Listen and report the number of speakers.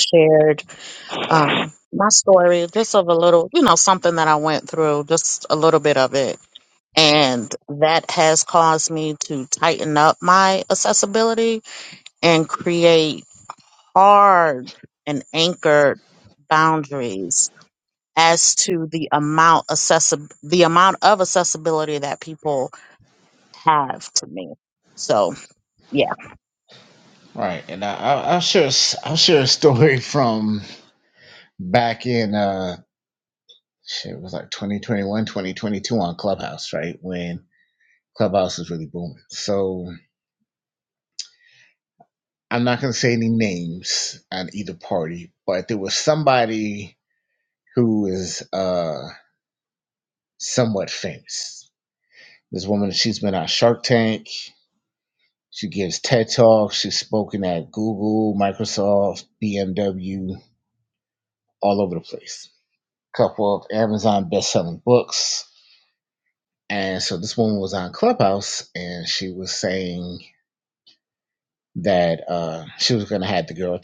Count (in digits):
2